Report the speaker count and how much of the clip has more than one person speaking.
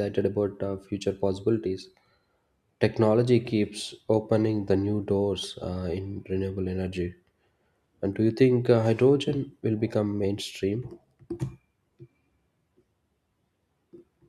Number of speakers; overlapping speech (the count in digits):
1, no overlap